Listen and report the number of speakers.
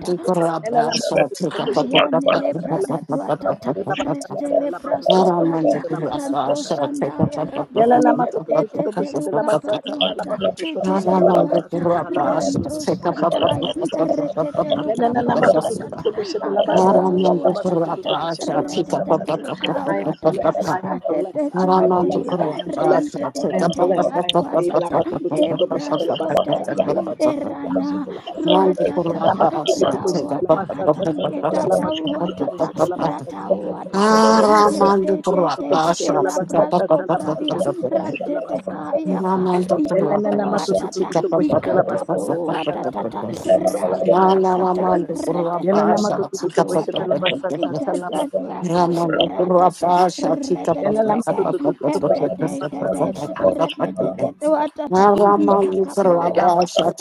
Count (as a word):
four